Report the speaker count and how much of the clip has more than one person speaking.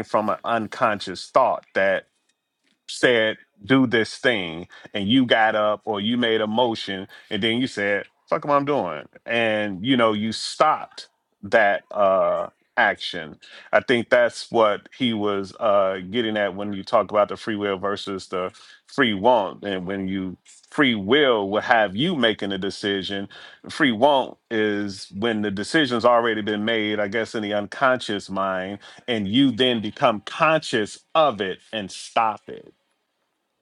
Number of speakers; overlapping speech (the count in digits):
1, no overlap